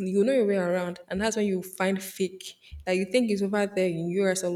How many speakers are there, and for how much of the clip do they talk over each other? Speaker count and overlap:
1, no overlap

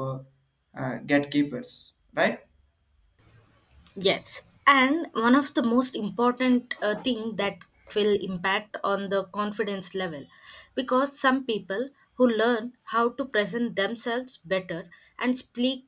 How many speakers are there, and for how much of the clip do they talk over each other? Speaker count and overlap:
2, no overlap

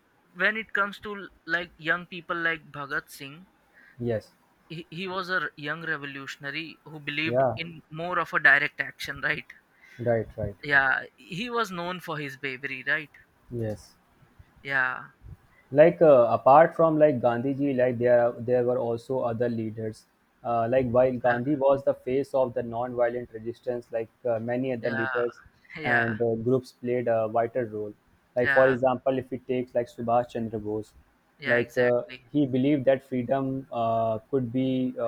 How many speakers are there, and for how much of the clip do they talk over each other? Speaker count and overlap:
2, about 6%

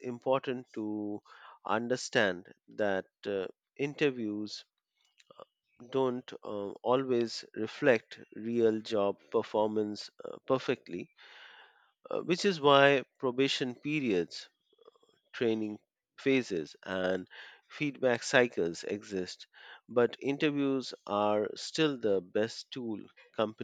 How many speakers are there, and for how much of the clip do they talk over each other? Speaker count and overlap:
1, no overlap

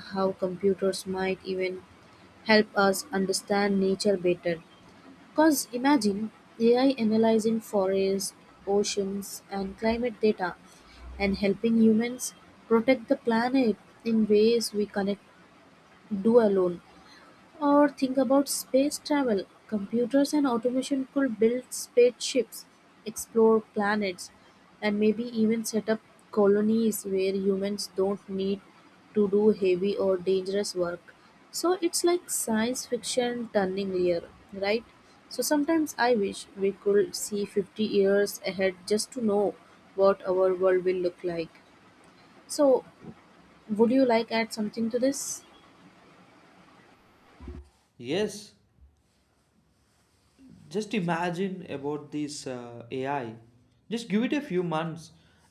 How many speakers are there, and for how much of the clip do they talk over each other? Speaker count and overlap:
2, no overlap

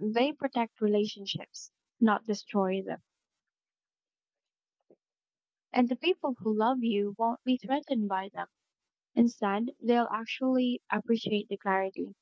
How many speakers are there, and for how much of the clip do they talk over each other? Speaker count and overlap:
1, no overlap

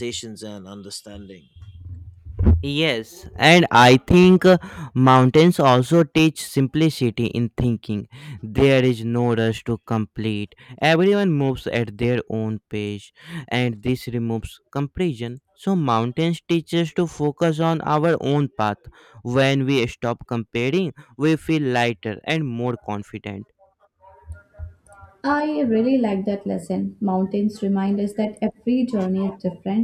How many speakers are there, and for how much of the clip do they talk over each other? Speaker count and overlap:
3, no overlap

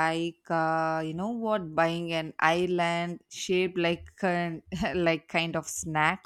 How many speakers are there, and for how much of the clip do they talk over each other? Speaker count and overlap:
1, no overlap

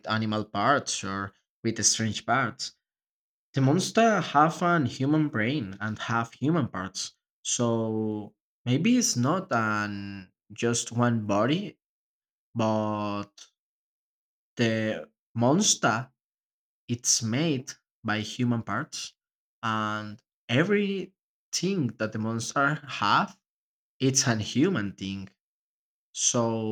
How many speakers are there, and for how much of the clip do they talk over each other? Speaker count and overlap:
1, no overlap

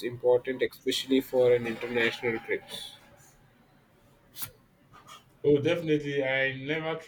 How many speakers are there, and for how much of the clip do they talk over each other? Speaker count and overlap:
2, no overlap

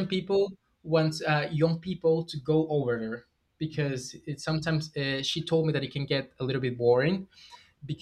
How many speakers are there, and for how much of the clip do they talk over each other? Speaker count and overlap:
1, no overlap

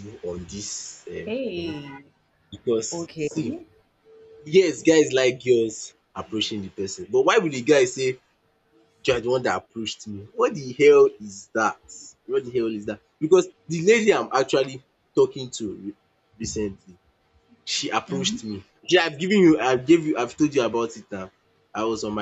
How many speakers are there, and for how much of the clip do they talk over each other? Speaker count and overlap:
2, about 3%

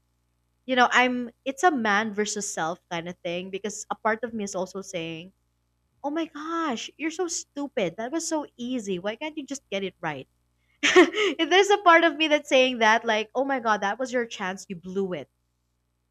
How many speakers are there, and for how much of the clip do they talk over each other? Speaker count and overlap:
1, no overlap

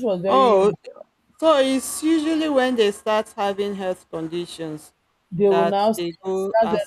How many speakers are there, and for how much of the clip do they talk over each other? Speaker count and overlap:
2, about 18%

